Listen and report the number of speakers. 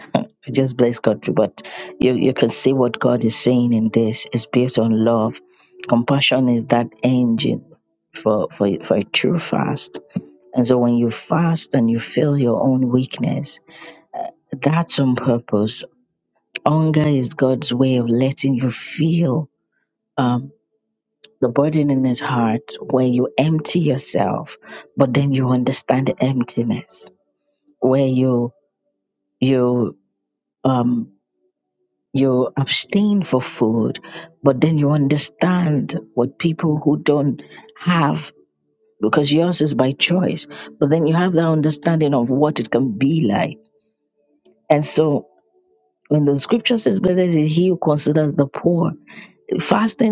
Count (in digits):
1